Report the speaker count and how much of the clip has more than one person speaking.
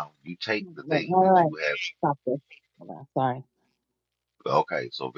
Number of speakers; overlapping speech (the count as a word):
two, about 12%